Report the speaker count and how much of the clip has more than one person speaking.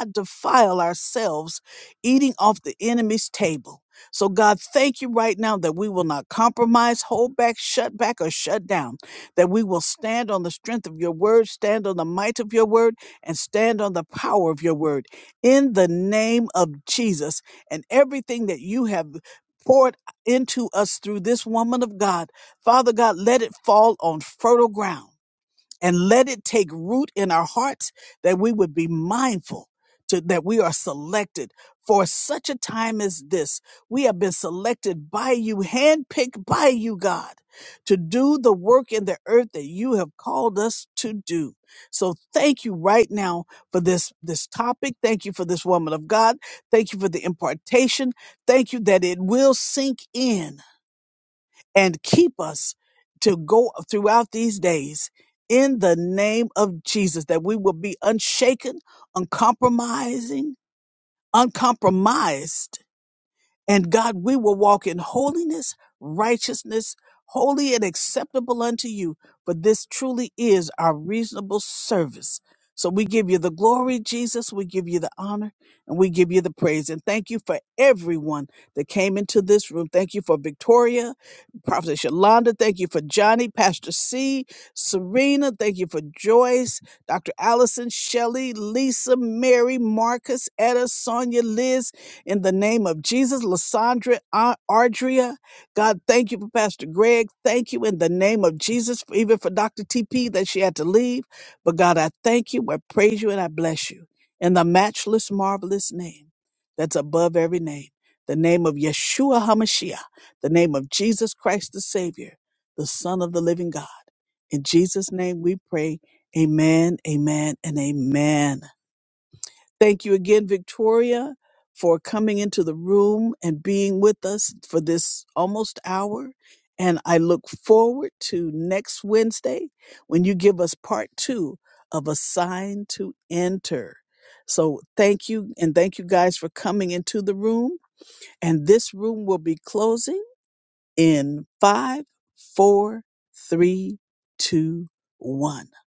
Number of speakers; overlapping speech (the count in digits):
1, no overlap